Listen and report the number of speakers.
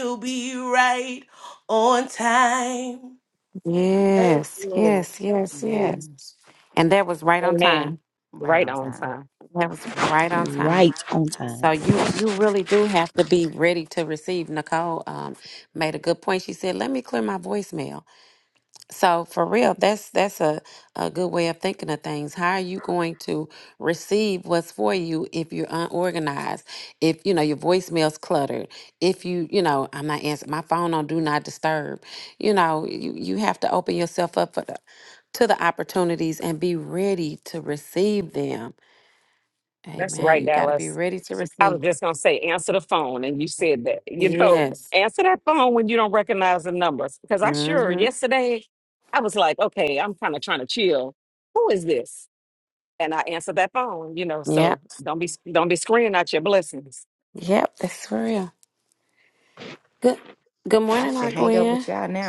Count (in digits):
5